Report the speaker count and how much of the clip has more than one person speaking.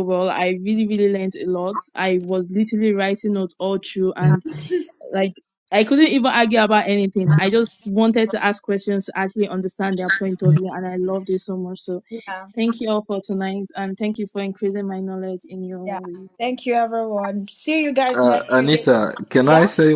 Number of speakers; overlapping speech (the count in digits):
3, about 7%